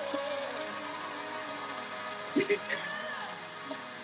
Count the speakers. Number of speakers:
zero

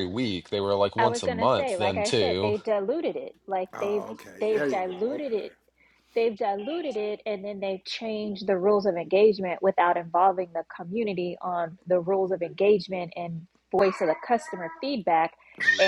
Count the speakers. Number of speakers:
three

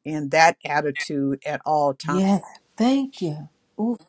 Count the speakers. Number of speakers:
two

